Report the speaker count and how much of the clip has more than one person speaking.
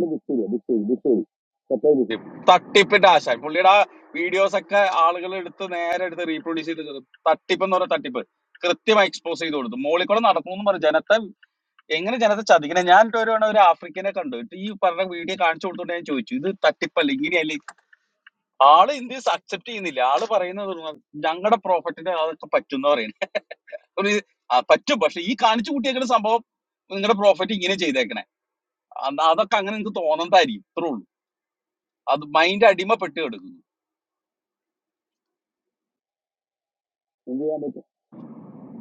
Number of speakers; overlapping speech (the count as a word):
one, no overlap